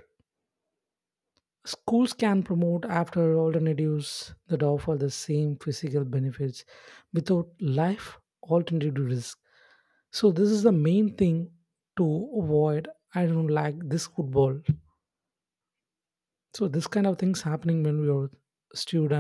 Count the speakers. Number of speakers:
1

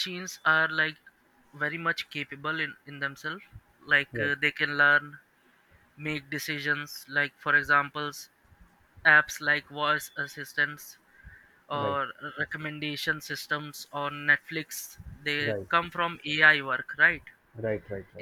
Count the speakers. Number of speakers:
2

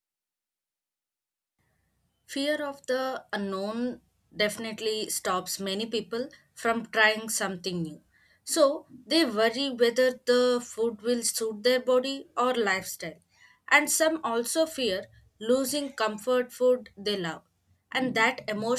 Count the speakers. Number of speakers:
1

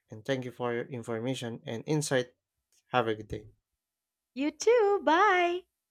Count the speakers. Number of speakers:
2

